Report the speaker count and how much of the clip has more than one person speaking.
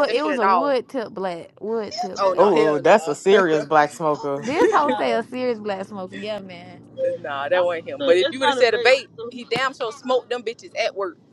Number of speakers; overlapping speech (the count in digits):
3, about 15%